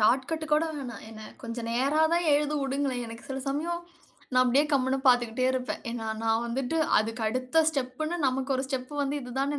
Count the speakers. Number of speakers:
1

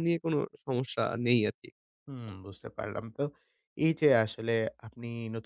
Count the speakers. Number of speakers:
2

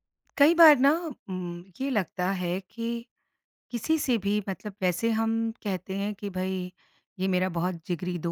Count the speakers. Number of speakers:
1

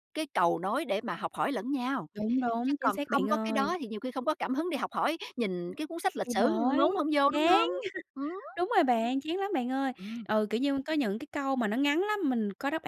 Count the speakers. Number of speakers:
2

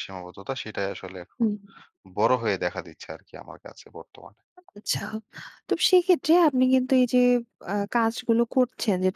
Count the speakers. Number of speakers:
2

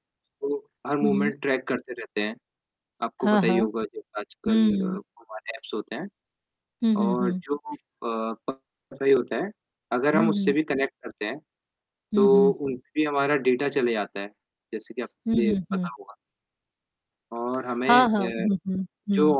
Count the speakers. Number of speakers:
2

